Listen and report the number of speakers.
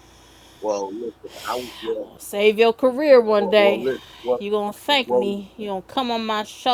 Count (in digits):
2